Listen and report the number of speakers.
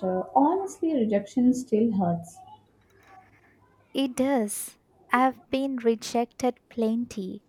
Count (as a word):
two